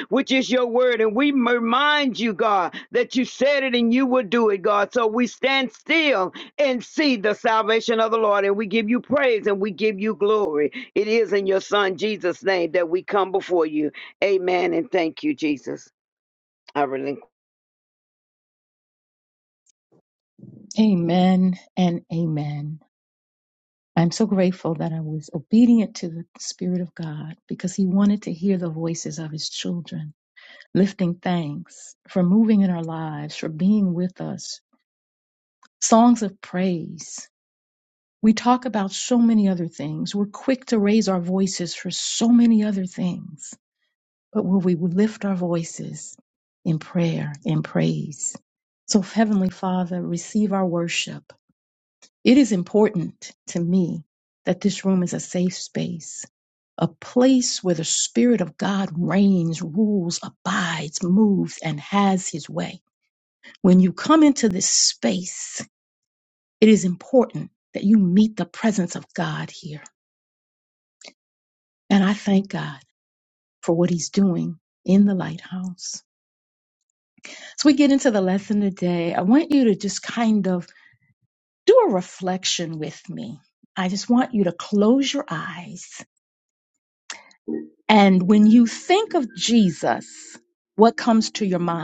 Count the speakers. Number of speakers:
2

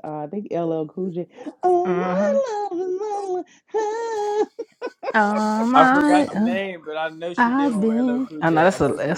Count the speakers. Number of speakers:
3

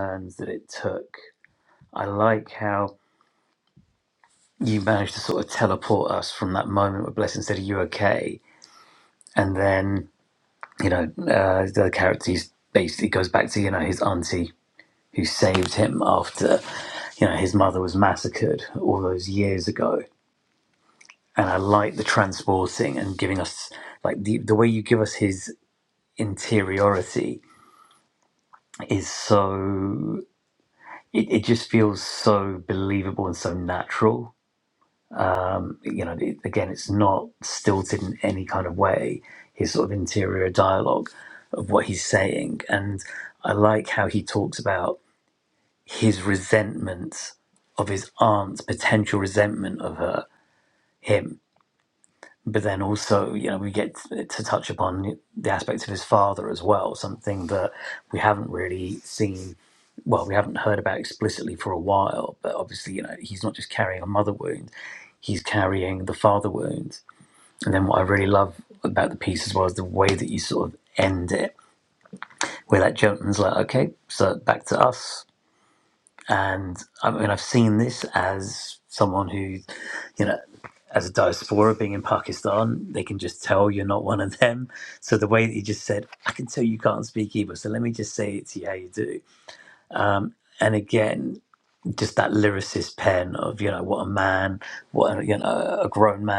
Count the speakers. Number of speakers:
1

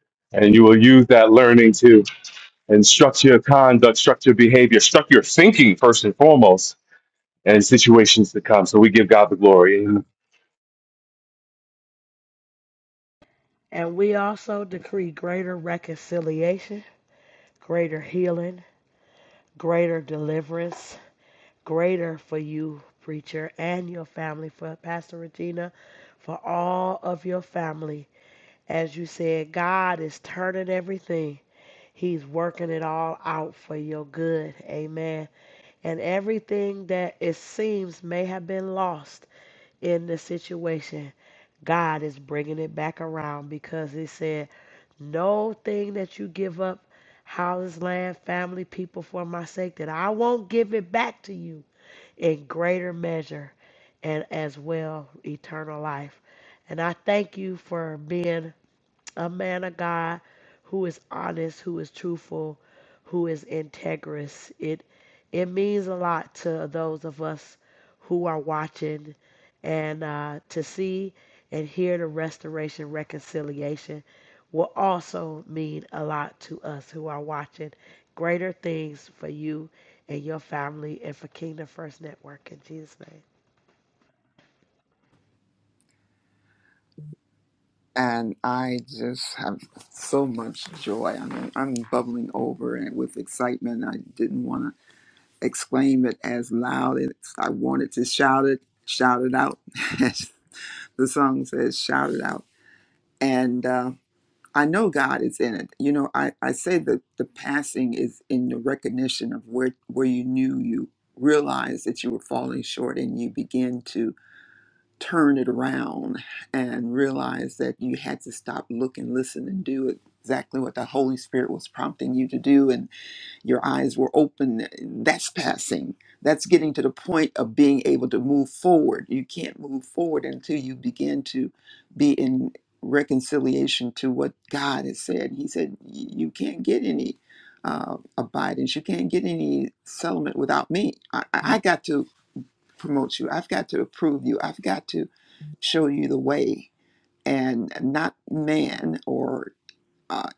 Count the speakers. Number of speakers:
3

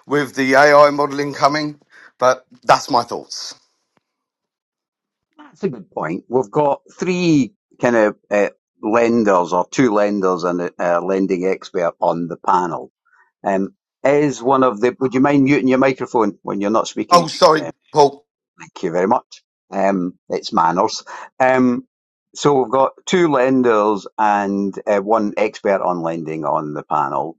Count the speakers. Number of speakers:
2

